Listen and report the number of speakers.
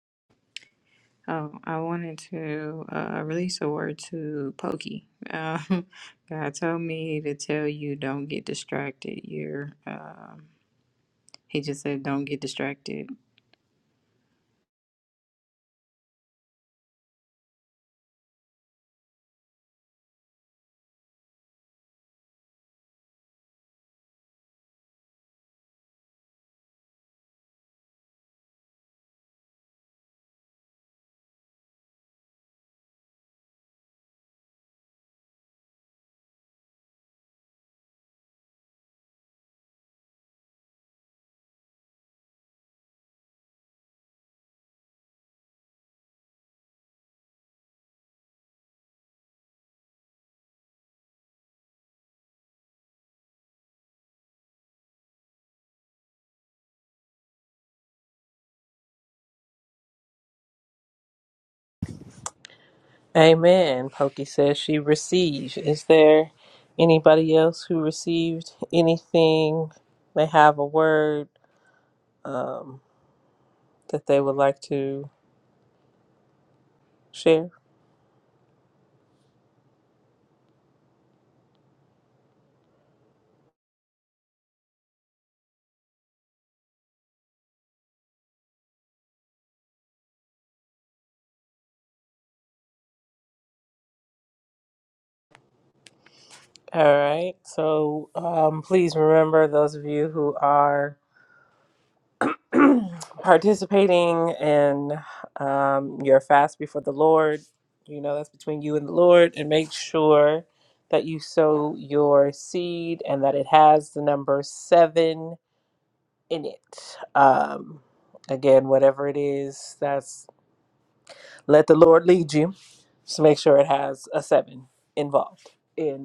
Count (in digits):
2